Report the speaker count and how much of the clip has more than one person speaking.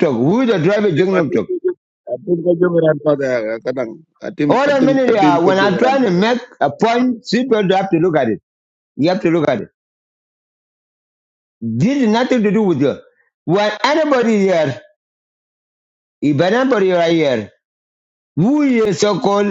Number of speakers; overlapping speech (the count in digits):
2, about 11%